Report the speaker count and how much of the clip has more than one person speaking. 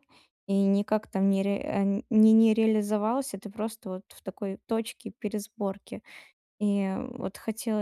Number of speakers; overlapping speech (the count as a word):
one, no overlap